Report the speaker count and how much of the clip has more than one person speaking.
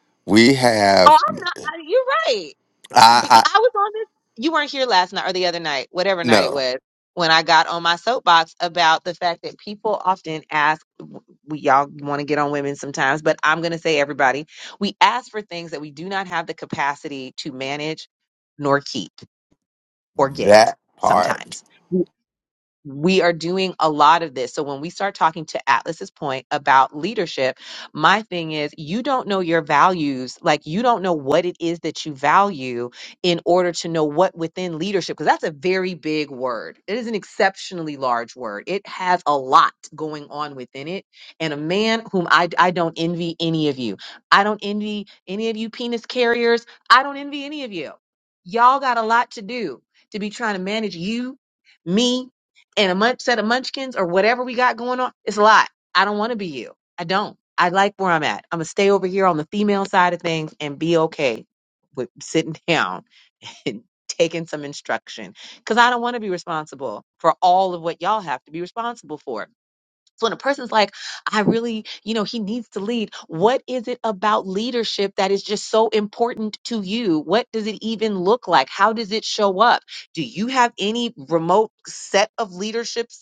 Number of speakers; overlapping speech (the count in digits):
2, about 2%